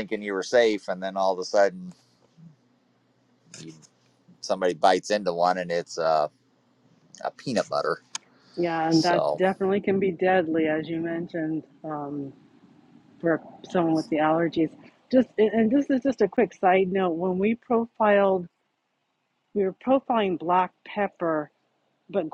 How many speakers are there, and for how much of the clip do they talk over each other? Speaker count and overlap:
two, about 1%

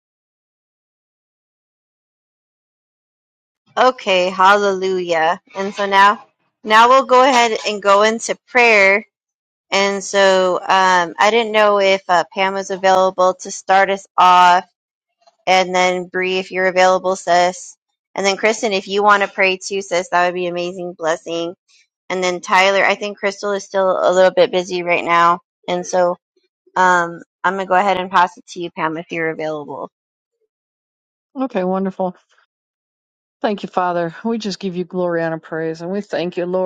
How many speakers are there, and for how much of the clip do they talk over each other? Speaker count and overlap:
two, no overlap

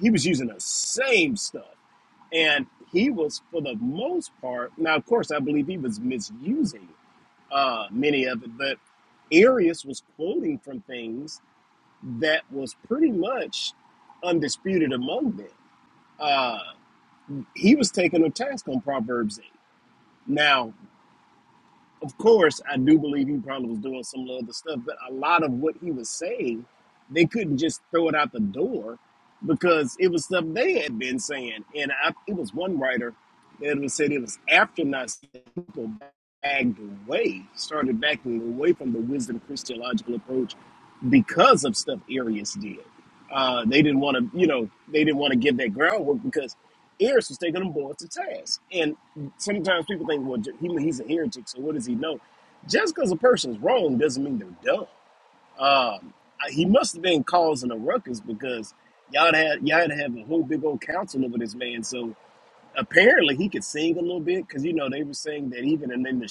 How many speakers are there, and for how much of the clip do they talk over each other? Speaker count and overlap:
one, no overlap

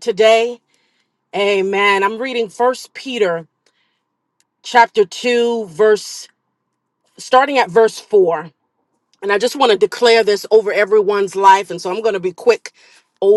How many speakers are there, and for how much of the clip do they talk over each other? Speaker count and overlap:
one, no overlap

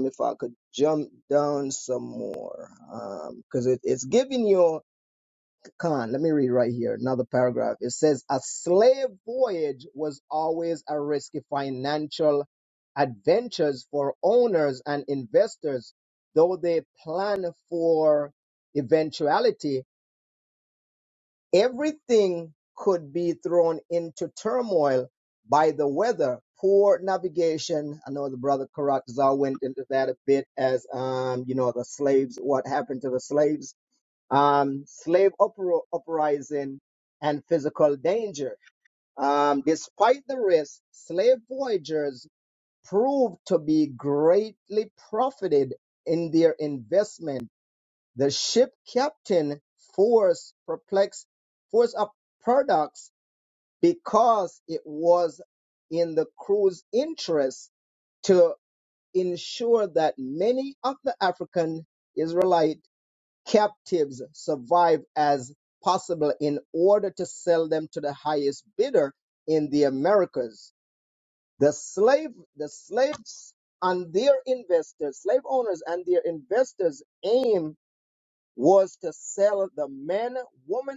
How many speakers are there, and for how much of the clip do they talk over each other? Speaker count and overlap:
one, no overlap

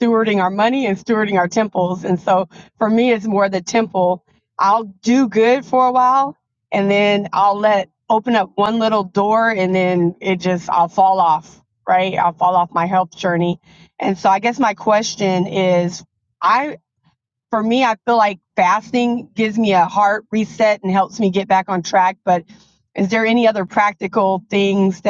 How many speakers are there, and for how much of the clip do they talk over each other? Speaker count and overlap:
one, no overlap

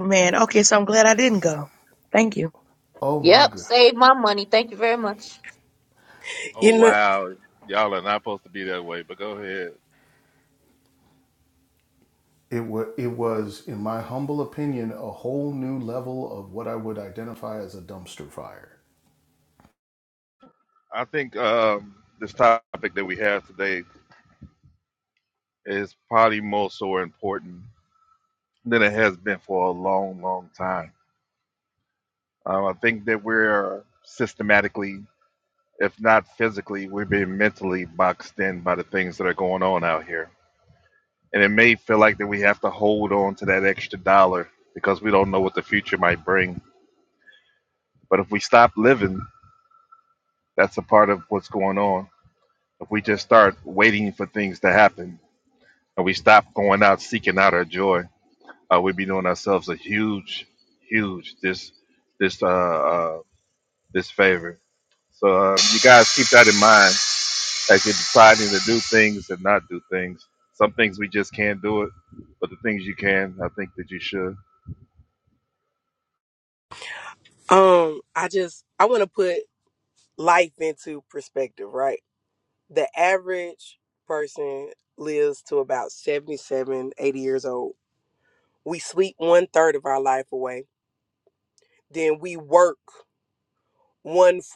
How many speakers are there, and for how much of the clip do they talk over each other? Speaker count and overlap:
five, about 1%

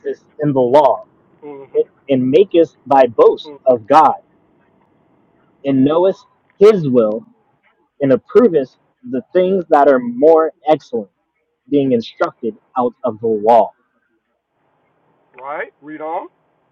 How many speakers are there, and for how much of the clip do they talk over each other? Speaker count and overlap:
two, about 1%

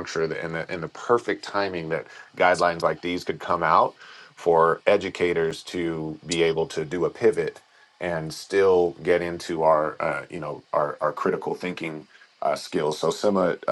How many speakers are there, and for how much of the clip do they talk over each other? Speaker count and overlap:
one, no overlap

